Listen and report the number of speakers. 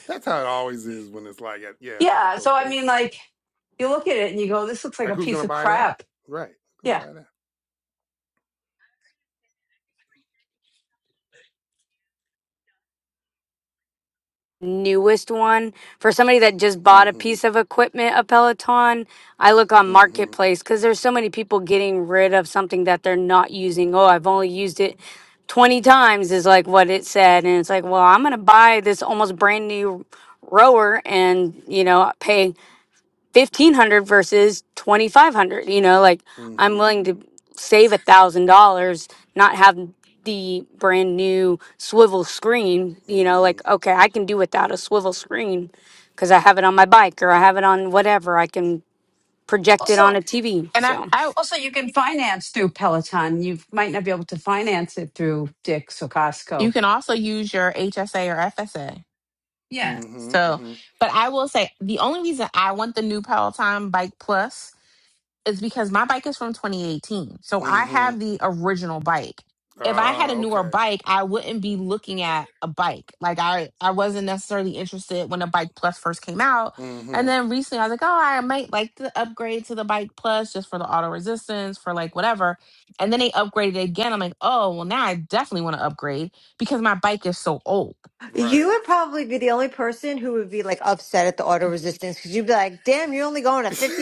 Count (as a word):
five